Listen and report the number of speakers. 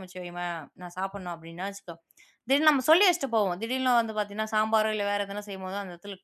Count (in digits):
1